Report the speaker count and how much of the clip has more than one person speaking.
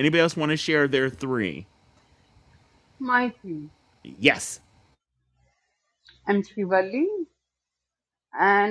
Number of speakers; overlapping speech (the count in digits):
2, no overlap